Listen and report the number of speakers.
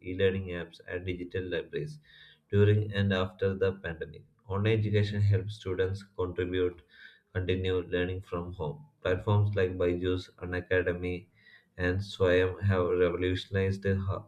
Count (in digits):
1